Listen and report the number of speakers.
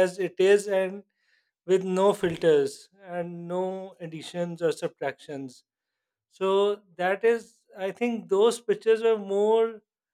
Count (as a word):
one